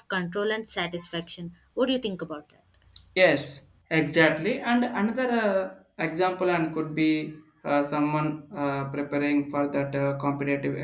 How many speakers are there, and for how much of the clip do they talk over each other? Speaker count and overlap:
2, no overlap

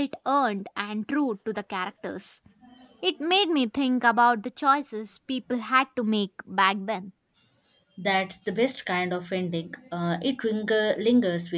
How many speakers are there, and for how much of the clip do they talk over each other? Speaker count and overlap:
2, no overlap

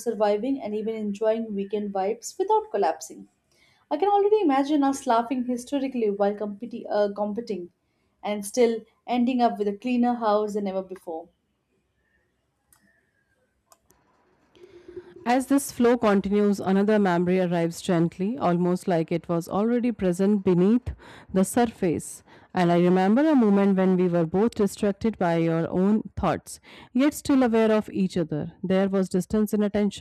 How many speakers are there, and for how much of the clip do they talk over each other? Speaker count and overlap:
2, no overlap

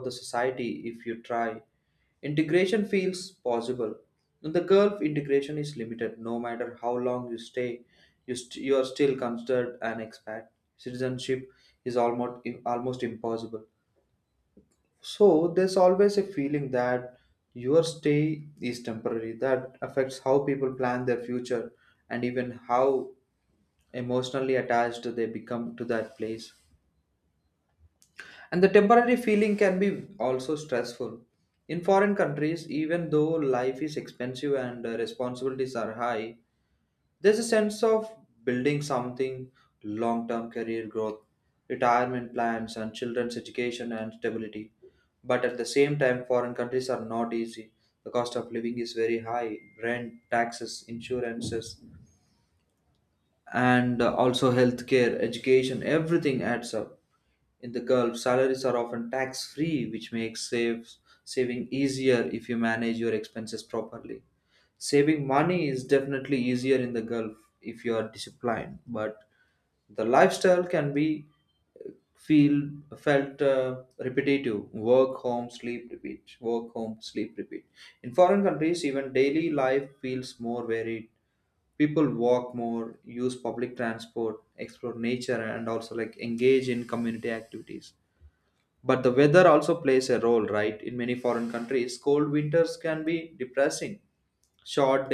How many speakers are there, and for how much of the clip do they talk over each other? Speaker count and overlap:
1, no overlap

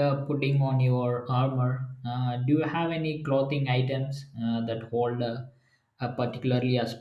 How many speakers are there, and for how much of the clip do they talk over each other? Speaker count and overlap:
1, no overlap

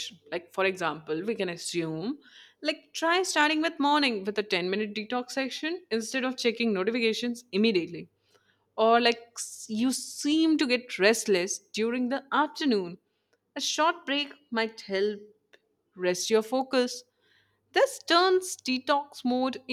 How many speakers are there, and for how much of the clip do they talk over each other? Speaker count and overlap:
1, no overlap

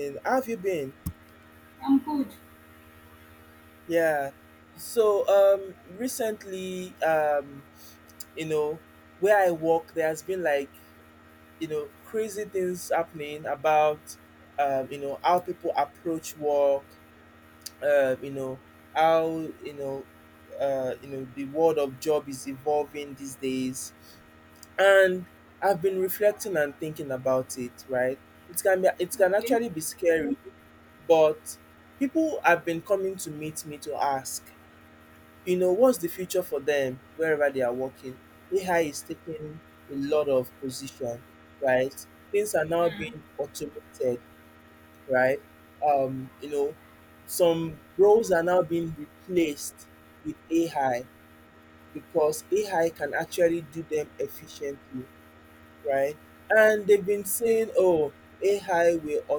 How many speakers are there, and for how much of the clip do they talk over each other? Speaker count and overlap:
2, about 1%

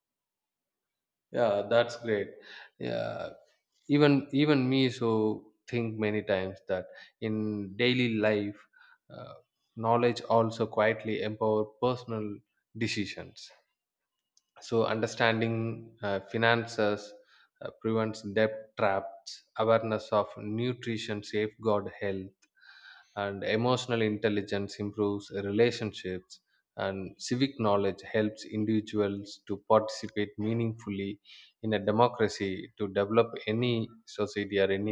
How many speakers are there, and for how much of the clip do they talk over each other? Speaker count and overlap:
1, no overlap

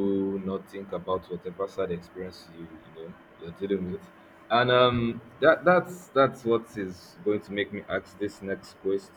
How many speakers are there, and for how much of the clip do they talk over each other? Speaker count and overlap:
1, no overlap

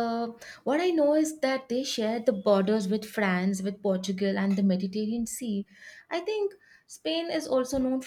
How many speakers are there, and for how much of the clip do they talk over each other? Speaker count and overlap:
1, no overlap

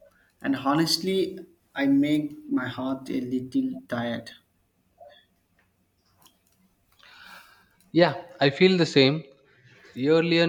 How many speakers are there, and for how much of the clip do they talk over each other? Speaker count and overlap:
2, no overlap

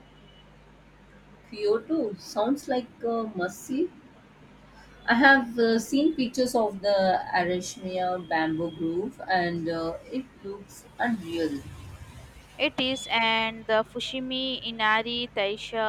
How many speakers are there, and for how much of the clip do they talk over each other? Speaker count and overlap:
2, no overlap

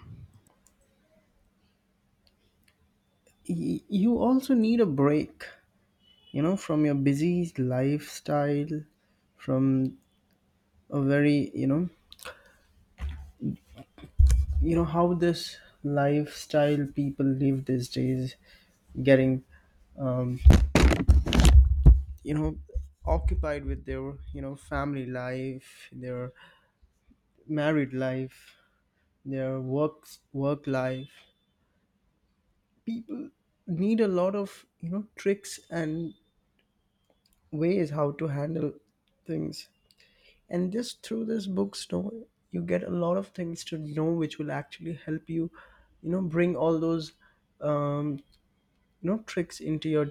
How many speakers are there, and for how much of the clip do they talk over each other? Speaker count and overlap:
1, no overlap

